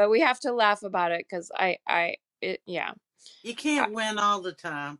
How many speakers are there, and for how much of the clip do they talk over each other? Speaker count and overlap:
two, about 2%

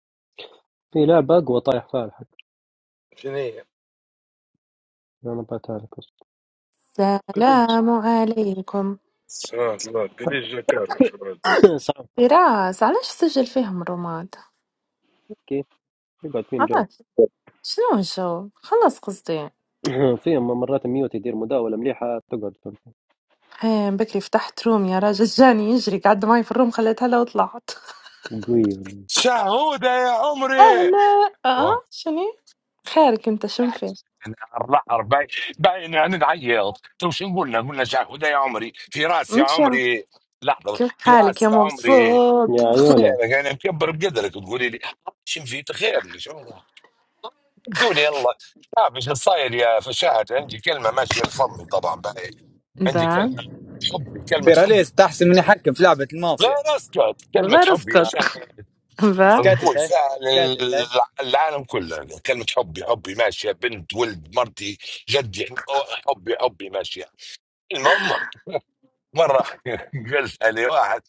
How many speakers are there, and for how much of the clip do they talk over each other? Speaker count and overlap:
five, about 8%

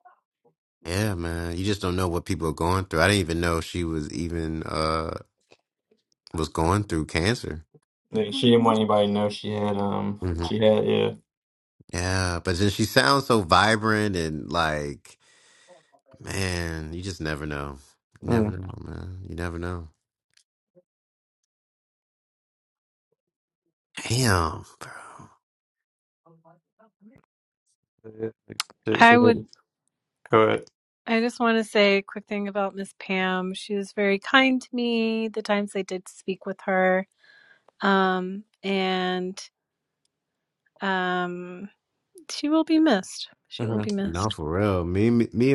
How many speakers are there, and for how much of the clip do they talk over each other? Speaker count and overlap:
three, about 3%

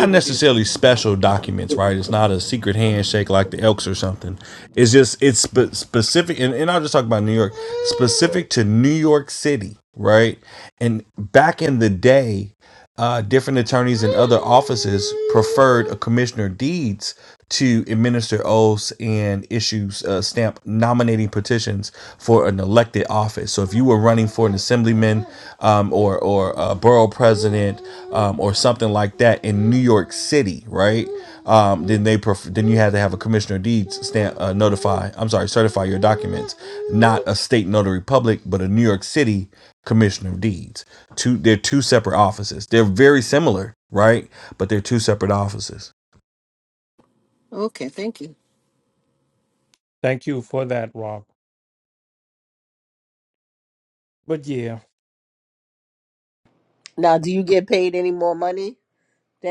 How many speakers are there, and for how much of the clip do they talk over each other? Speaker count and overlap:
four, about 1%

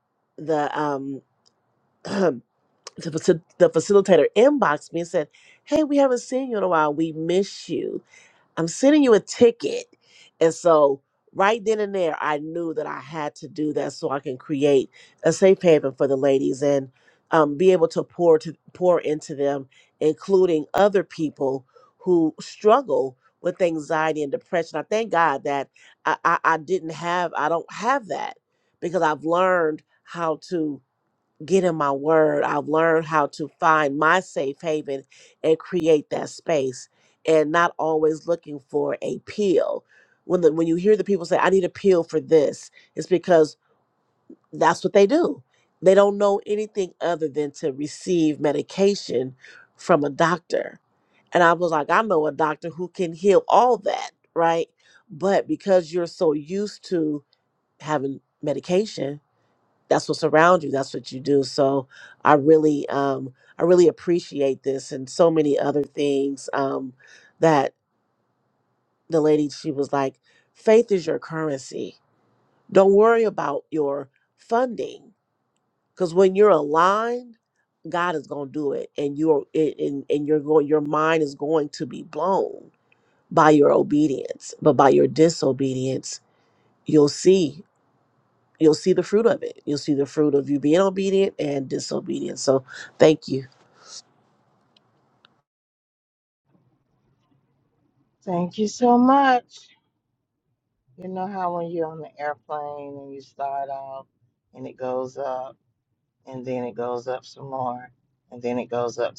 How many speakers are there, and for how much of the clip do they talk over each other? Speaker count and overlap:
two, no overlap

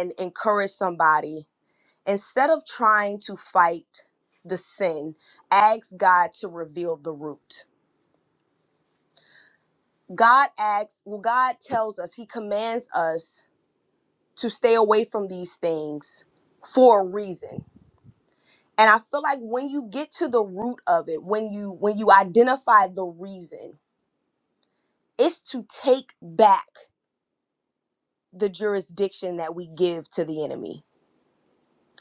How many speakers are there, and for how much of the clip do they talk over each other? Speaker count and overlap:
one, no overlap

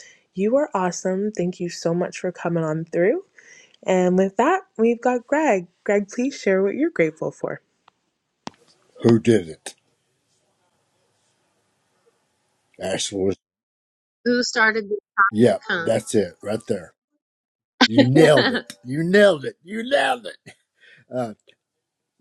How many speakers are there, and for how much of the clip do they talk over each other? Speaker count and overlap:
three, about 3%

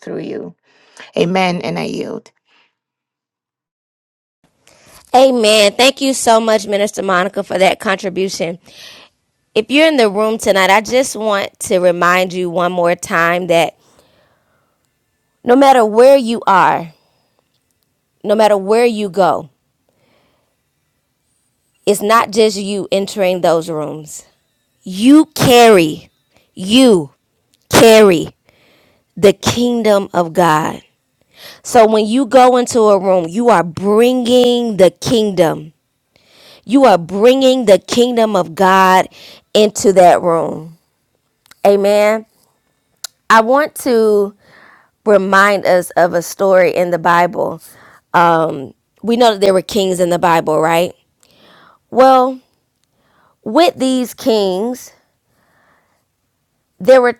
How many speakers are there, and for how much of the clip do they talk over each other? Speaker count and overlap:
two, no overlap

